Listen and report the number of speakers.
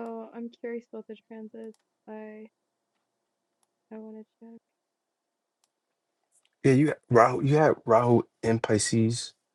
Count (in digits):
2